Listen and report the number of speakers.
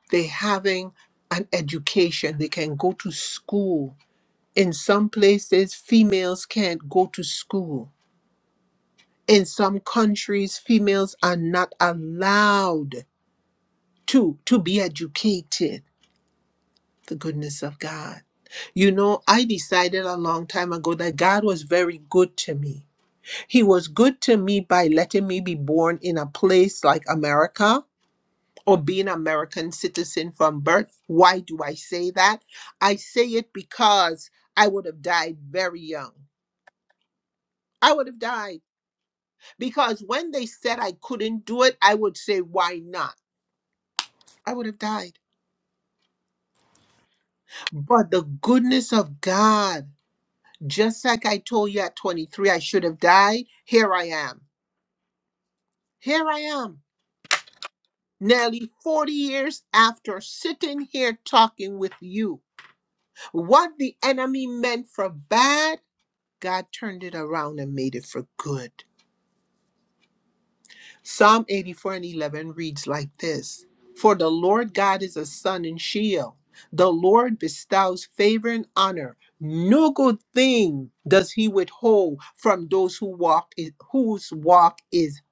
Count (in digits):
1